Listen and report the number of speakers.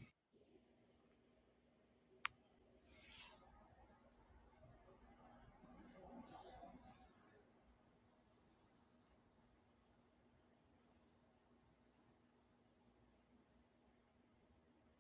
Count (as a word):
zero